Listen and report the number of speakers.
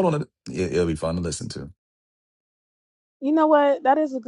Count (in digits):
2